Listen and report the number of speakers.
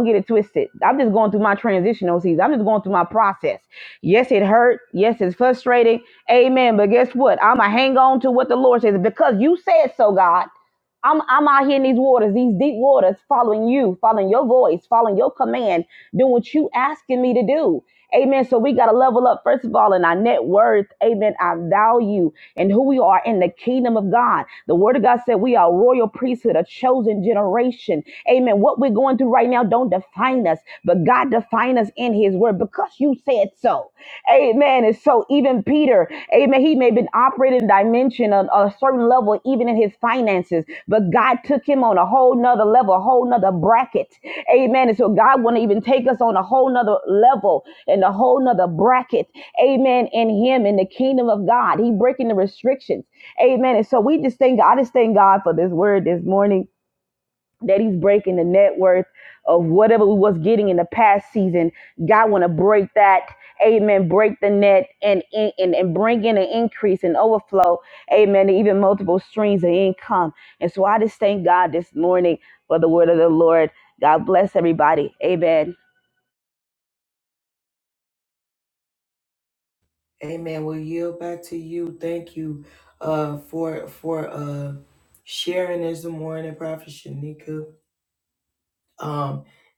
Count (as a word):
two